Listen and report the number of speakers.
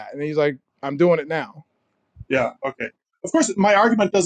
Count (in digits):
2